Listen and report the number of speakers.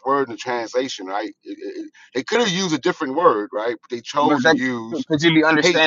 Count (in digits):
2